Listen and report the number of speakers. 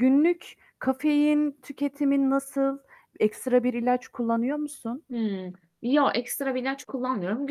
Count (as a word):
two